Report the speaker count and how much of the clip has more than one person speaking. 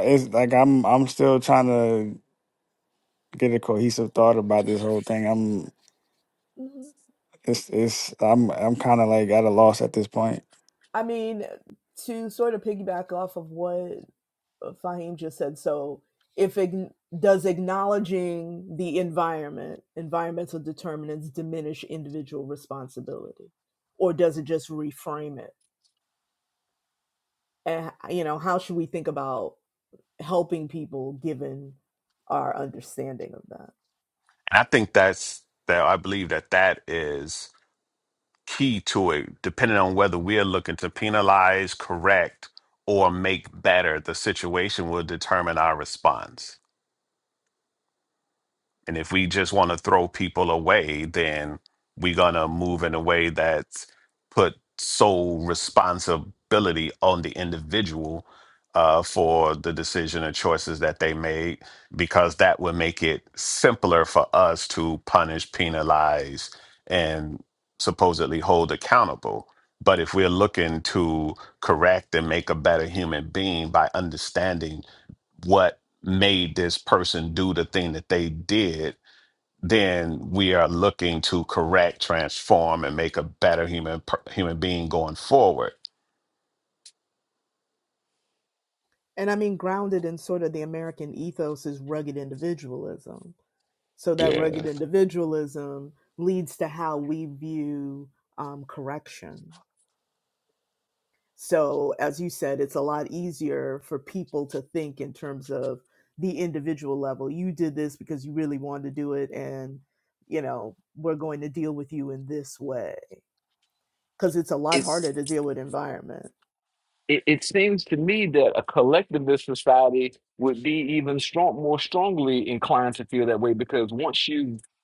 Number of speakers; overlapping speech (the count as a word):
four, about 1%